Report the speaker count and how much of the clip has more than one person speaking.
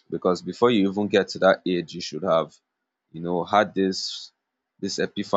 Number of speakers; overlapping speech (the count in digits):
1, no overlap